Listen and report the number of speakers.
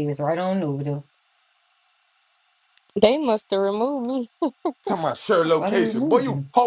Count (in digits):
3